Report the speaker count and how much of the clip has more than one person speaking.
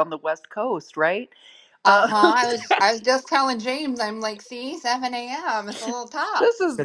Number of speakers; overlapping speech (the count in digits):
2, about 6%